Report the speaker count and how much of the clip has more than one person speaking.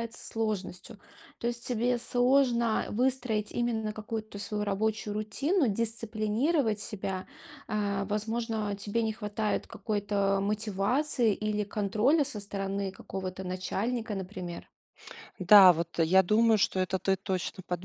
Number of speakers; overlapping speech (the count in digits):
2, no overlap